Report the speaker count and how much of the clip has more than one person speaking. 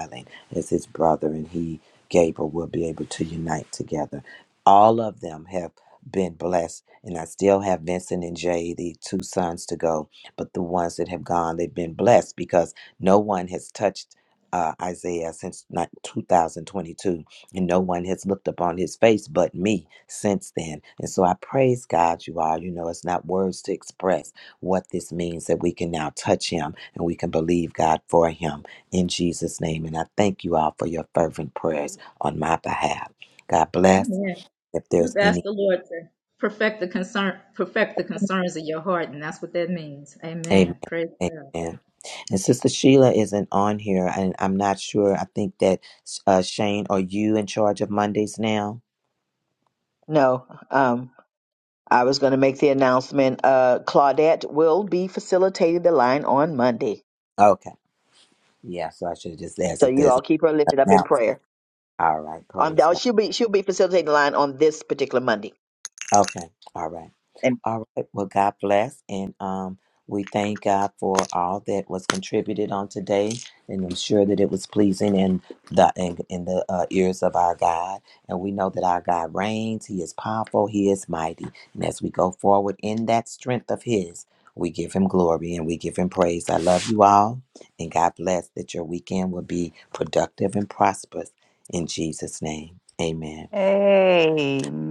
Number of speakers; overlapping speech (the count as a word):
four, about 2%